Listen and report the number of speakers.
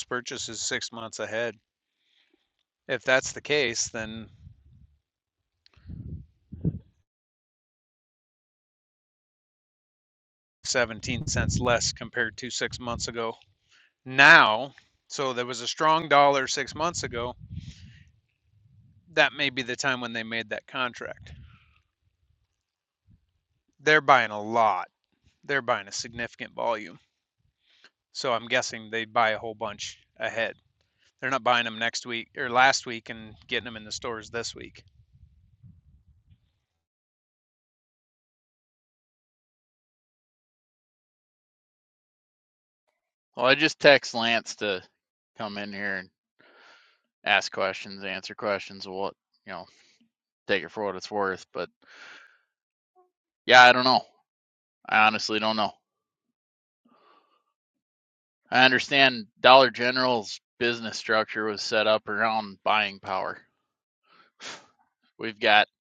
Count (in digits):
2